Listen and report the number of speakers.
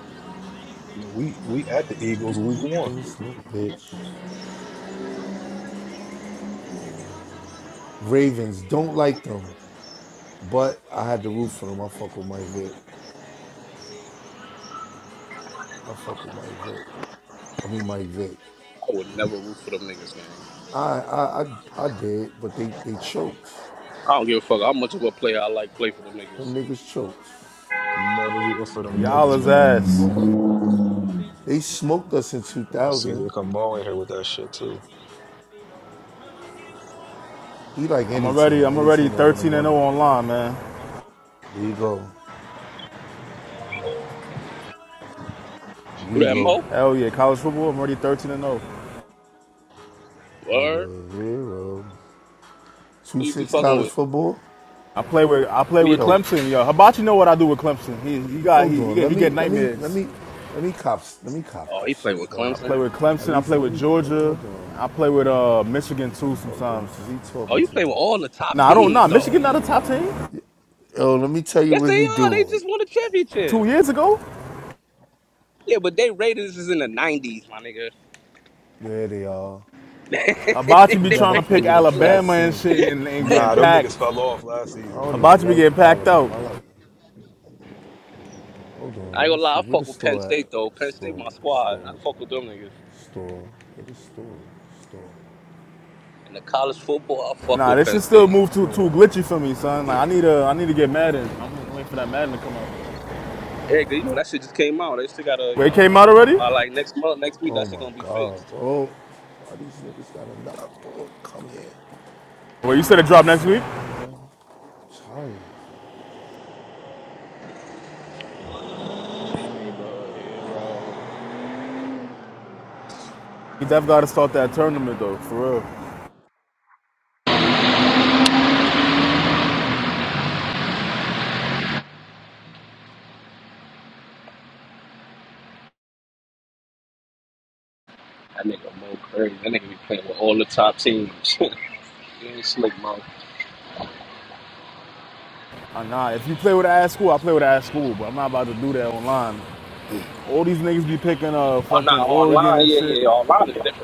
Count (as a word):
four